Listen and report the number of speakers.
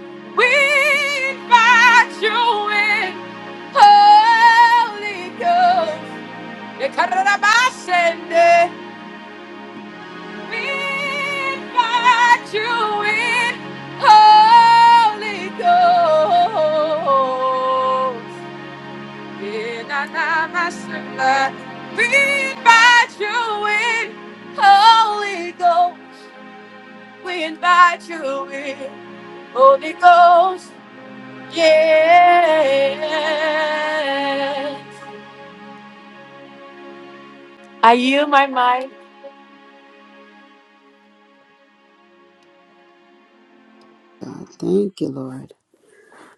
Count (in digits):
2